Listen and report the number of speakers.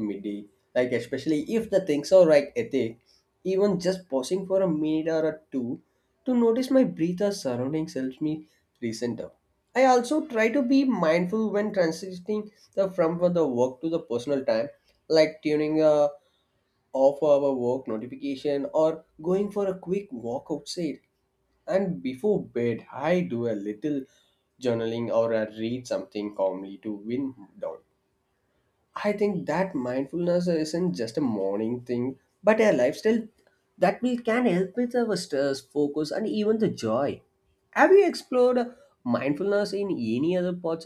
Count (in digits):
1